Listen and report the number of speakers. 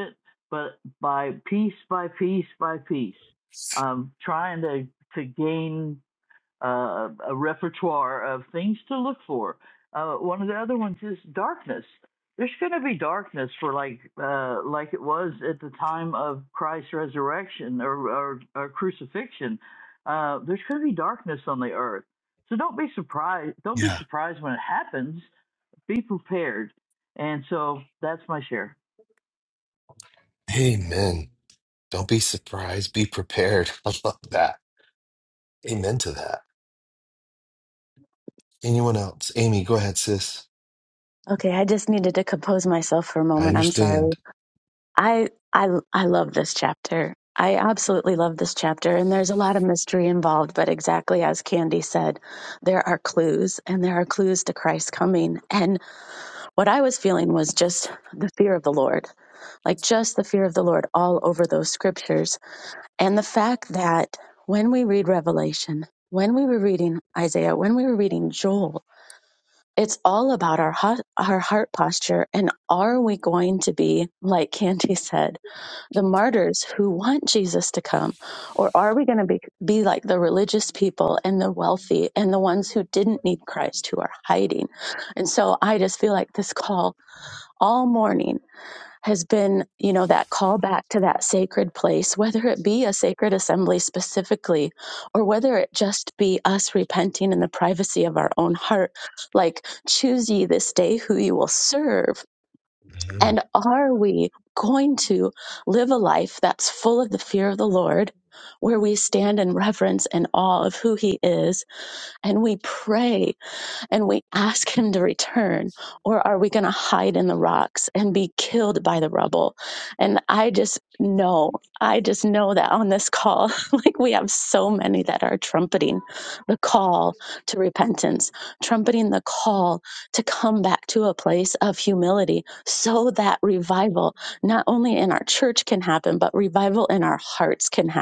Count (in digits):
3